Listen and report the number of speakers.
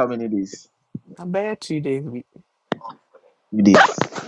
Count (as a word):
two